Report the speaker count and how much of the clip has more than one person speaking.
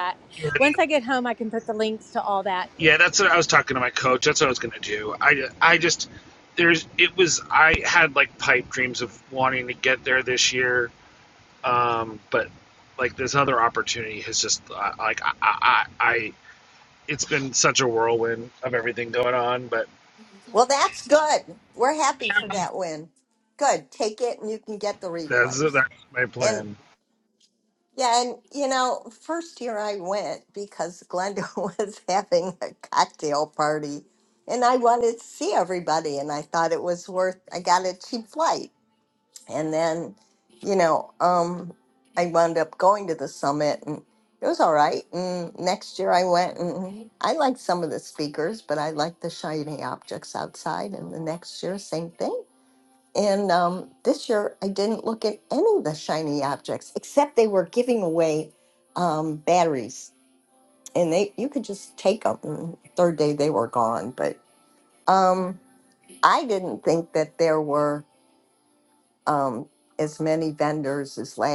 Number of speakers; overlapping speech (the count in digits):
3, about 1%